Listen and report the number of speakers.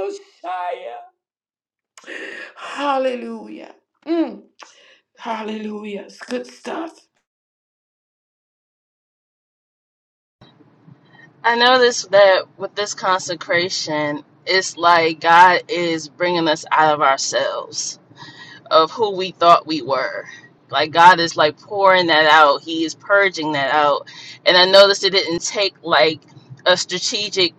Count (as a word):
two